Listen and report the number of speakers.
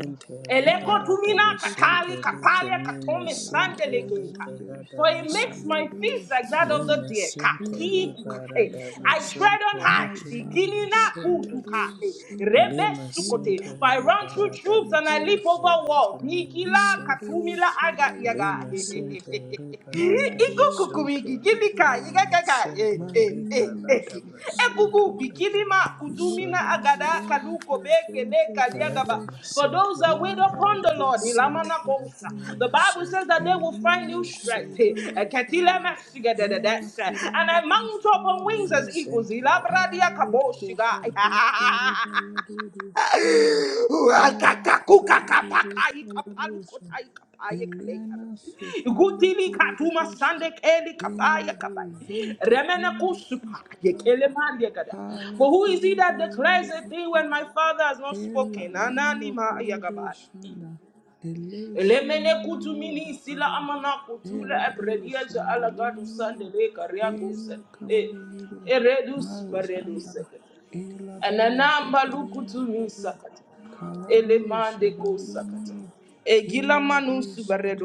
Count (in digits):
3